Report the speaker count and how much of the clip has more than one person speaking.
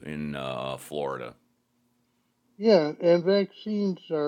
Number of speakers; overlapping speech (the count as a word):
two, no overlap